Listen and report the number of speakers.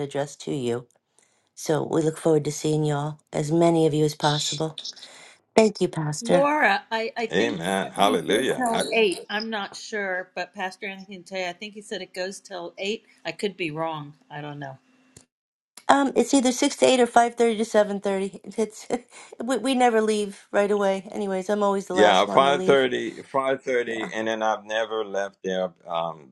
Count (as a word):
three